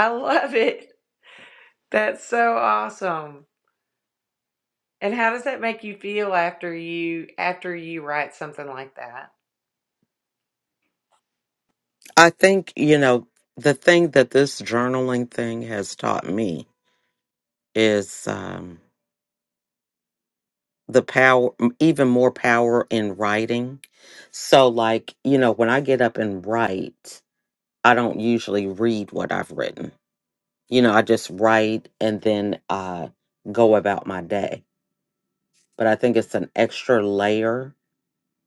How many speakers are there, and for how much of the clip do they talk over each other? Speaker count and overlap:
two, no overlap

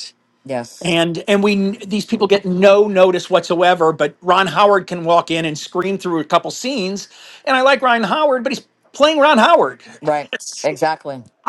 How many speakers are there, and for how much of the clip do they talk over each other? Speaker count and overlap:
two, no overlap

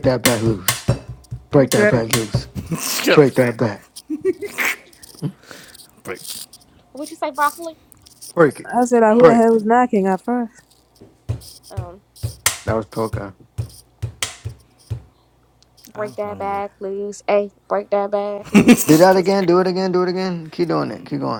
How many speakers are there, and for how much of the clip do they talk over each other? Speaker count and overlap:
four, about 14%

